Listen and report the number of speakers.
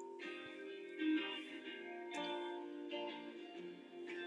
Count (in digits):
0